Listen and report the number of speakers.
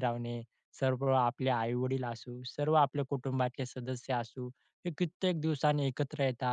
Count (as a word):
one